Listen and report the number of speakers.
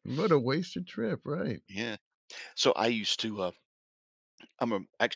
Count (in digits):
2